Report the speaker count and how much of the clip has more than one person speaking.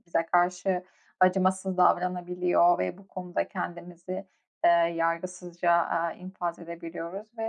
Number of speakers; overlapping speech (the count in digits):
1, no overlap